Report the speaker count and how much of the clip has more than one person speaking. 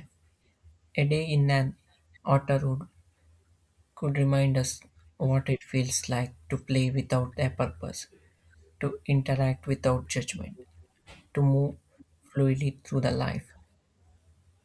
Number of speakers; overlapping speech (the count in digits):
1, no overlap